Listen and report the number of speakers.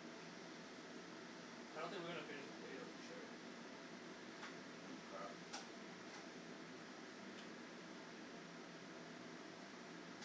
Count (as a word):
one